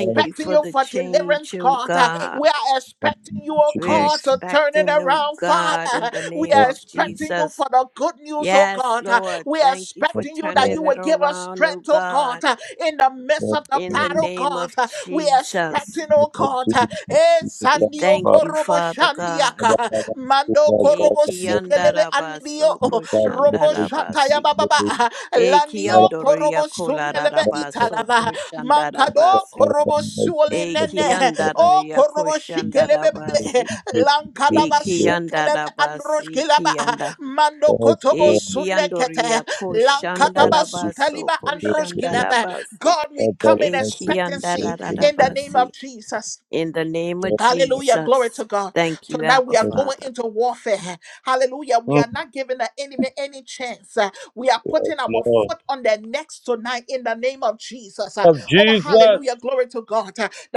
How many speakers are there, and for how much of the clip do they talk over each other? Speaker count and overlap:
three, about 54%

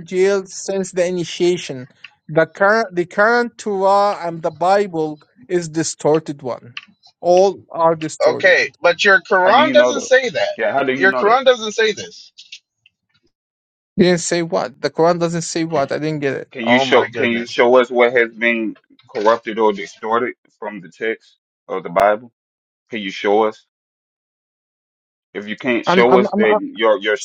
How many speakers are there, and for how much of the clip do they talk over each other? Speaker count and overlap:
three, about 10%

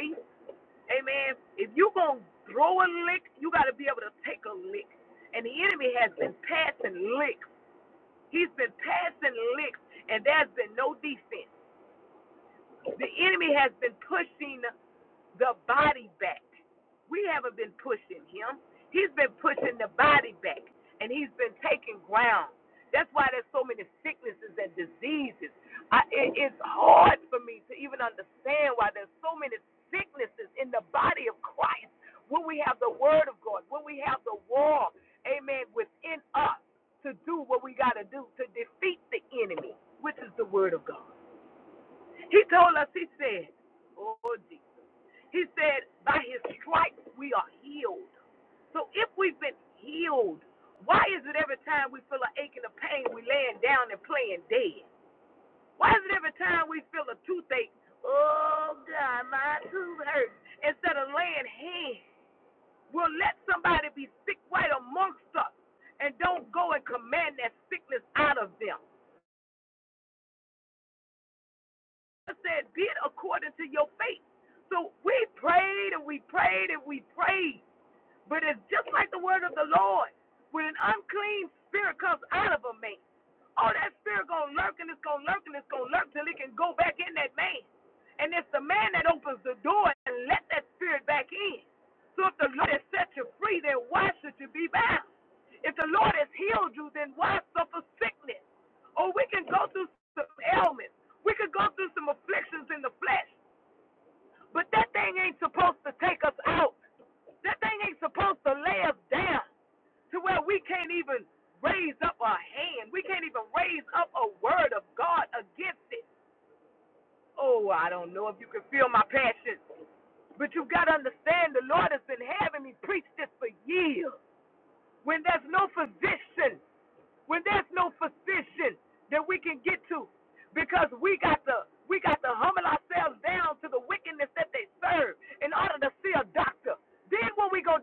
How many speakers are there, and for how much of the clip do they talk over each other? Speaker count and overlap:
one, no overlap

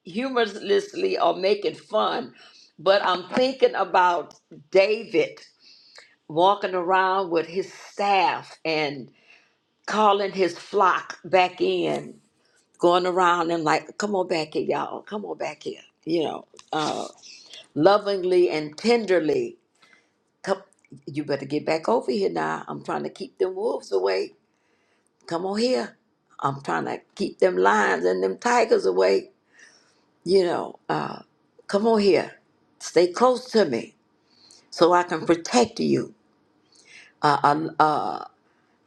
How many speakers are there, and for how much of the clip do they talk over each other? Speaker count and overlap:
one, no overlap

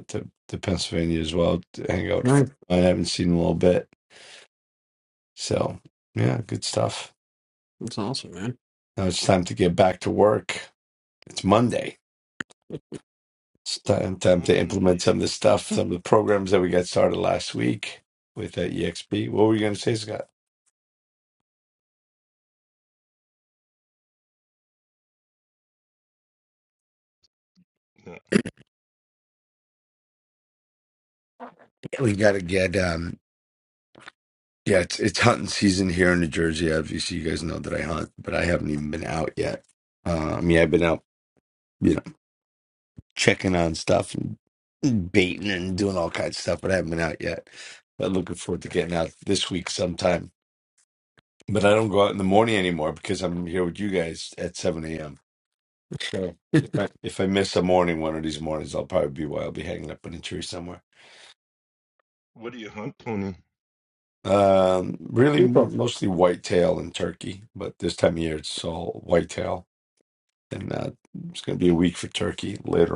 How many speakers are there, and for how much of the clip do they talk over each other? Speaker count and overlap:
three, about 2%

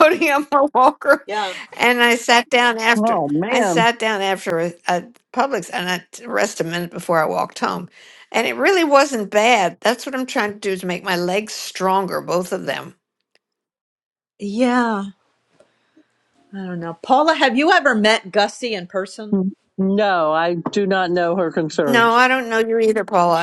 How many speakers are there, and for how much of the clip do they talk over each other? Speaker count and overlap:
three, about 5%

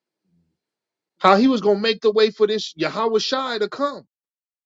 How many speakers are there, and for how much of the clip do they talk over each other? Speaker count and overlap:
one, no overlap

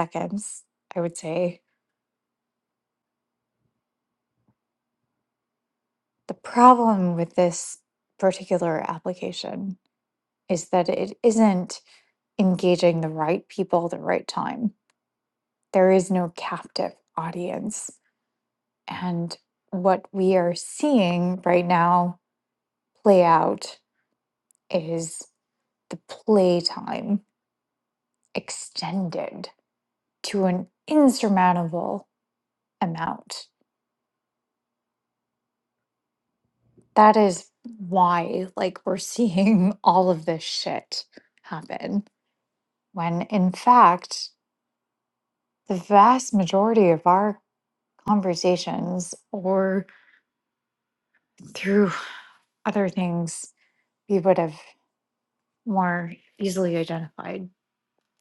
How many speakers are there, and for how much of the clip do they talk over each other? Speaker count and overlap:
one, no overlap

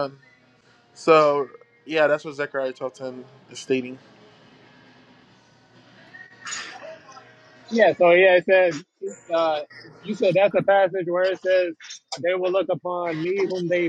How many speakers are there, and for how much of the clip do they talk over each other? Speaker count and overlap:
two, no overlap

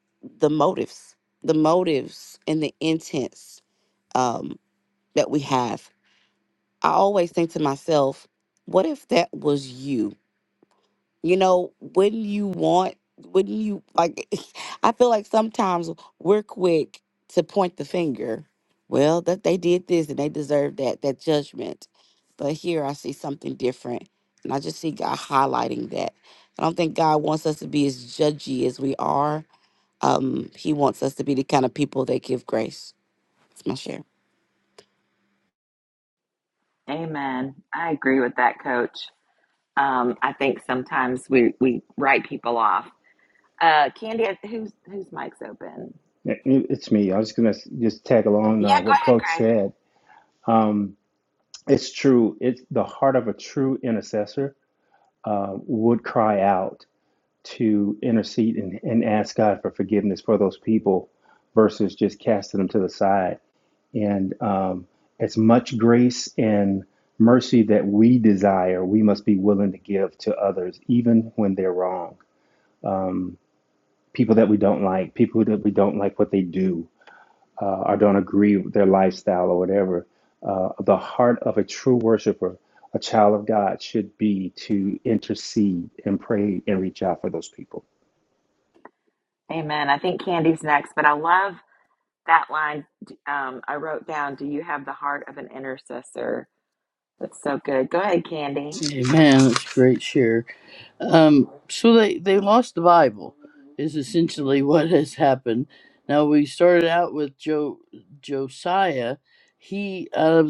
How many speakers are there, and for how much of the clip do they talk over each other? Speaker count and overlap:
four, about 1%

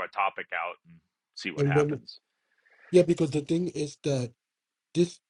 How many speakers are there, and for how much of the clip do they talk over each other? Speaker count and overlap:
two, about 8%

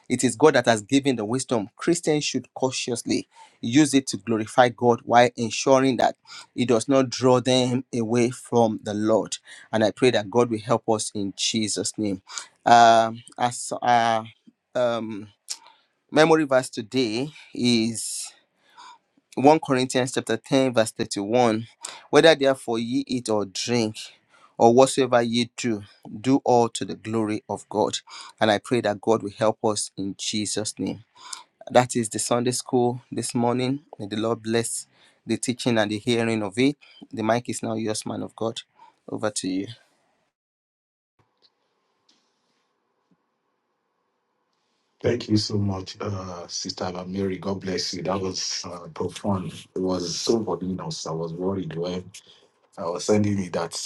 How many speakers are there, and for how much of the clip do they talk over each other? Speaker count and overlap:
two, no overlap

